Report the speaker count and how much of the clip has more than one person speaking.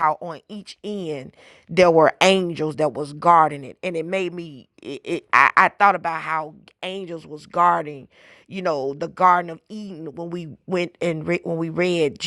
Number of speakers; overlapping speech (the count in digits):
1, no overlap